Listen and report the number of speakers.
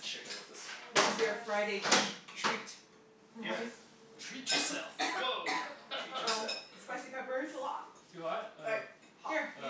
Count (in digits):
4